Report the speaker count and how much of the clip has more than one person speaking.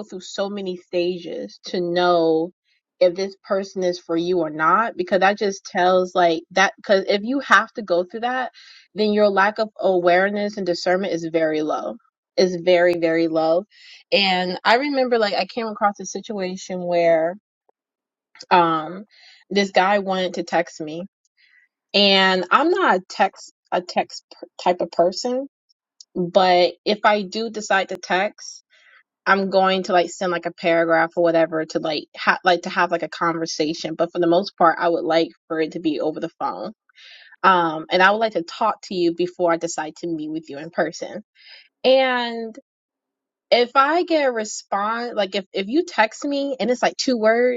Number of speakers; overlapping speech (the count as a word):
one, no overlap